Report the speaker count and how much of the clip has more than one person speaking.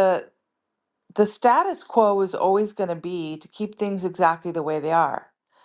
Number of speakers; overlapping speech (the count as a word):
one, no overlap